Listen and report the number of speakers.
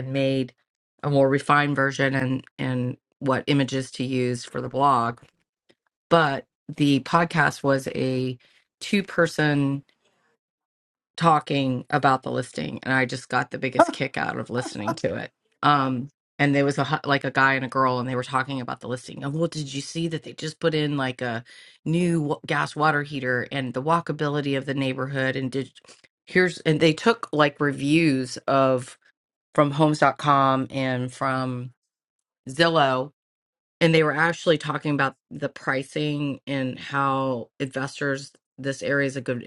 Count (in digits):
1